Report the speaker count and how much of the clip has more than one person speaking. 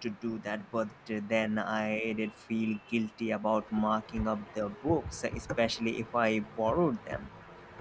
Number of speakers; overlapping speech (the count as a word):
one, no overlap